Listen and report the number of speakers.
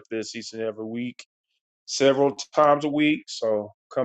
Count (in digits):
1